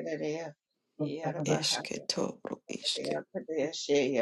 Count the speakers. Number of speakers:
two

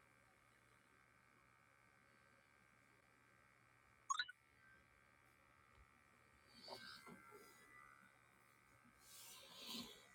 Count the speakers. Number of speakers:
zero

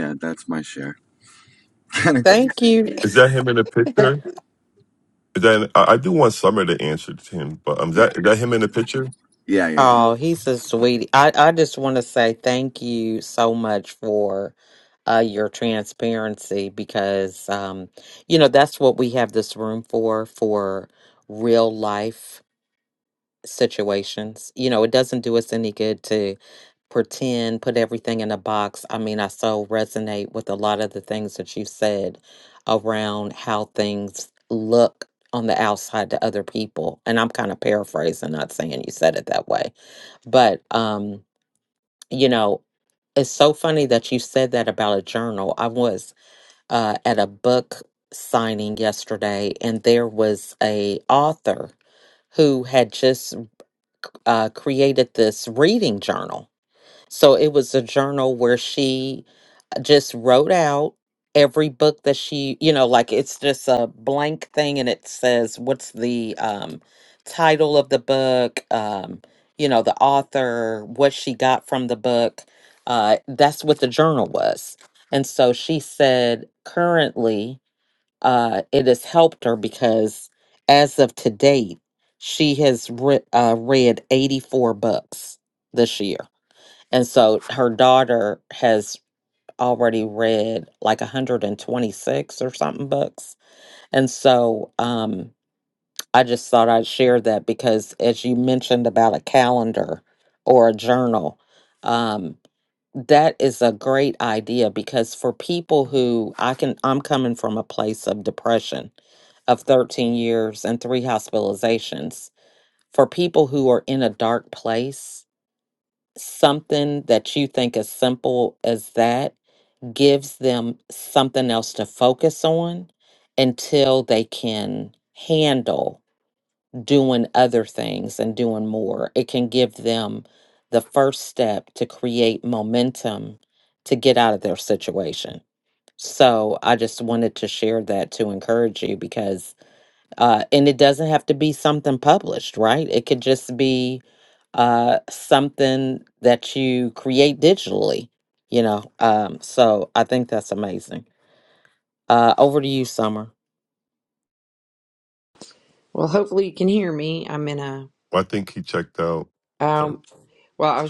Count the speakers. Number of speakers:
four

